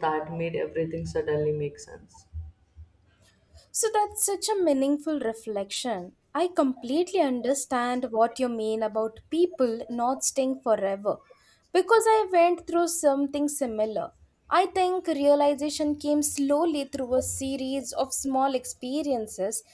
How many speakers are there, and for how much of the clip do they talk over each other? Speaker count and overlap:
2, no overlap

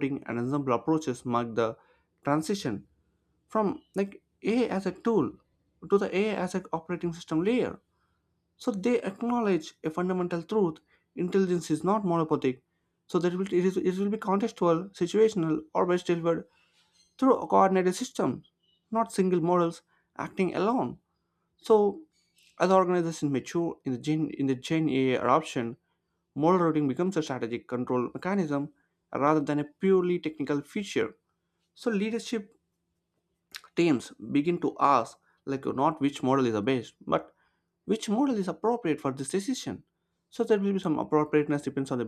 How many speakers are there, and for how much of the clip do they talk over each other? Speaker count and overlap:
1, no overlap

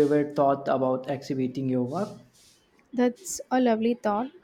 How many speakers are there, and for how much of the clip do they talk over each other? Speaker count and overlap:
2, no overlap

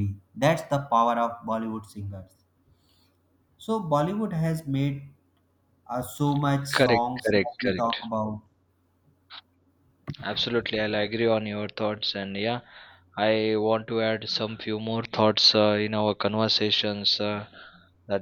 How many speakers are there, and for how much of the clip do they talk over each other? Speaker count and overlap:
2, about 7%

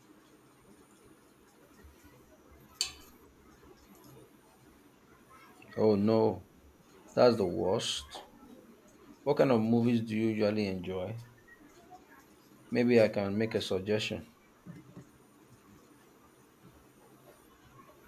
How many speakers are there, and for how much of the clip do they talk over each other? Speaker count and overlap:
1, no overlap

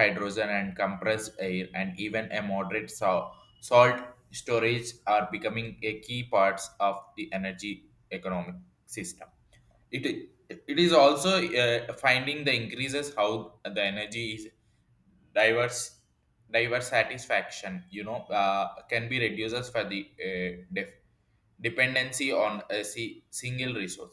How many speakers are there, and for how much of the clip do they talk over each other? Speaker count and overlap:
1, no overlap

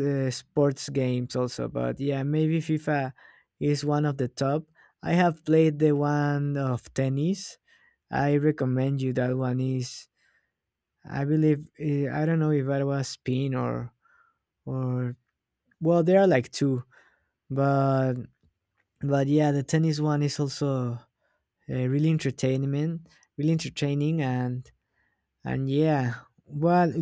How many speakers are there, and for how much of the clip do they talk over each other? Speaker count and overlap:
1, no overlap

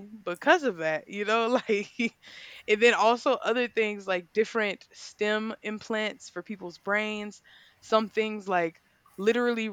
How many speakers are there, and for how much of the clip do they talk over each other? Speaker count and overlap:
1, no overlap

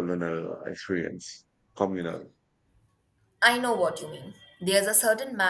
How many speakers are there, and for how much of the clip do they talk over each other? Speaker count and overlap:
2, no overlap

